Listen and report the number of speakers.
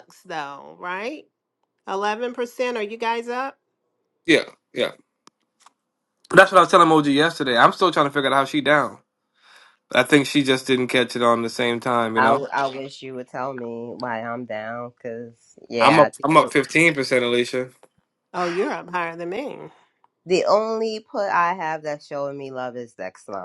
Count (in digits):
3